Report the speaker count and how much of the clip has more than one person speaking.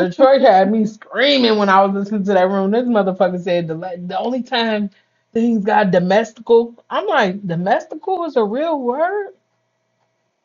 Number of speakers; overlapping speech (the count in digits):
1, no overlap